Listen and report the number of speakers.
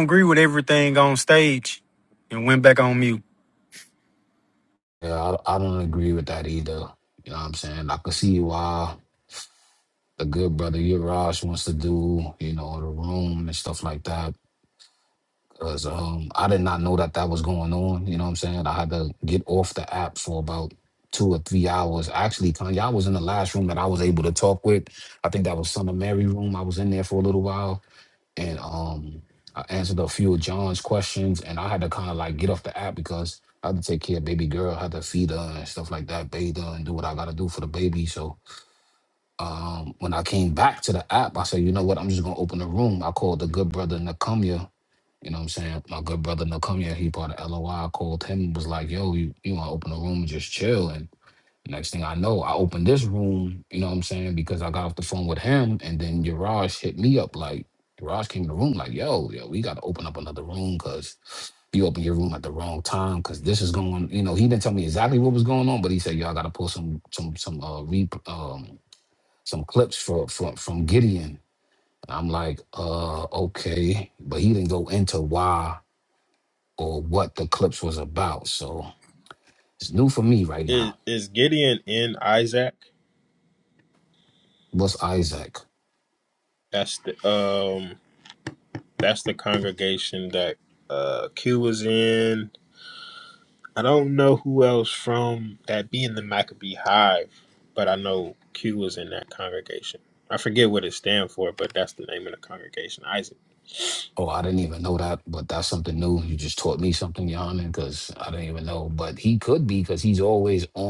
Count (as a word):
three